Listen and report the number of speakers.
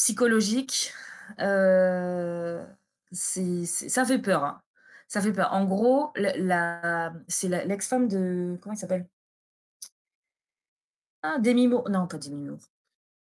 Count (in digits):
1